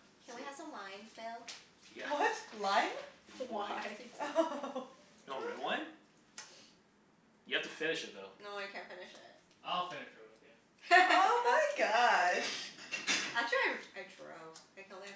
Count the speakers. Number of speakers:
4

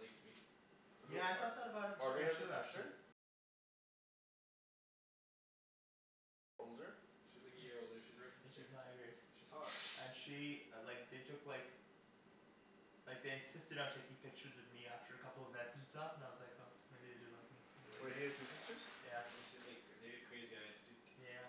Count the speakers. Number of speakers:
3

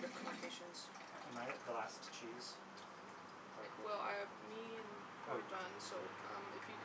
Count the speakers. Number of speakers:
2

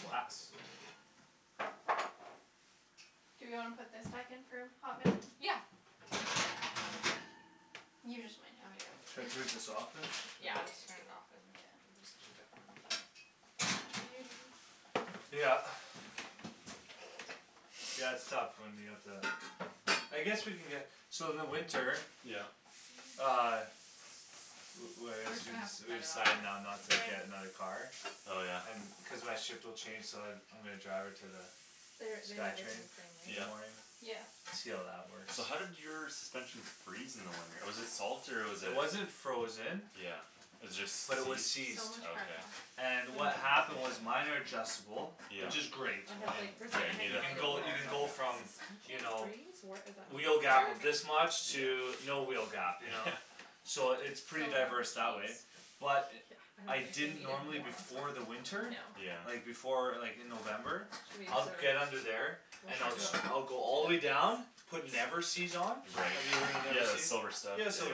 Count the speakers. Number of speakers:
4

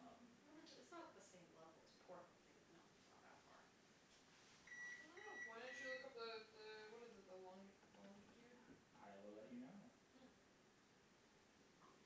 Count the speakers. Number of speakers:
3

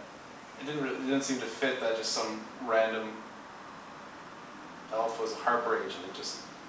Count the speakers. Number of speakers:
1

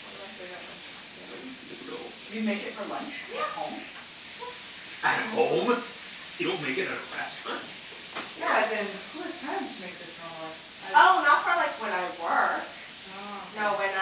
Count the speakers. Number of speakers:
3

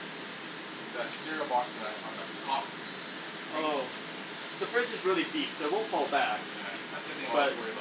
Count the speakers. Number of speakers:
2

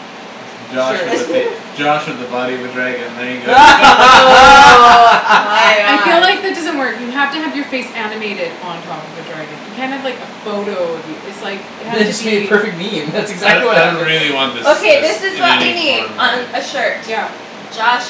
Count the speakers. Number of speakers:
4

